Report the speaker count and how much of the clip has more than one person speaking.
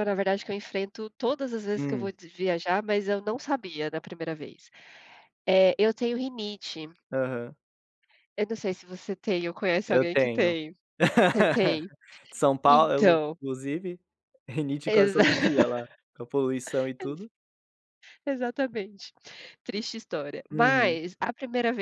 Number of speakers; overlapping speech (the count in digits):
2, about 12%